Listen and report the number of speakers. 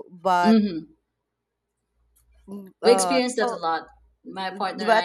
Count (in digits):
2